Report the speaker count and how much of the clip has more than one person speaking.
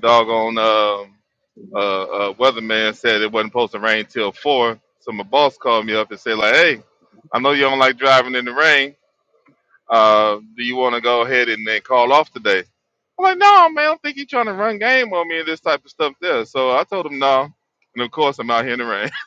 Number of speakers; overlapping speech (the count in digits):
1, no overlap